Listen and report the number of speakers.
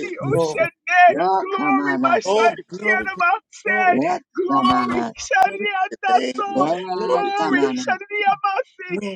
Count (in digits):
3